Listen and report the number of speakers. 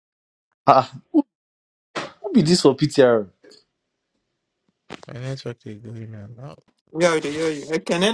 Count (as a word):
three